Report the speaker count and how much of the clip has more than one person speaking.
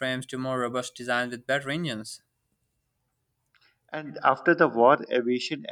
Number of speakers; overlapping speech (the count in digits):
2, no overlap